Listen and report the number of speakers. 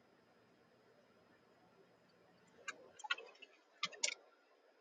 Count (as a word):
zero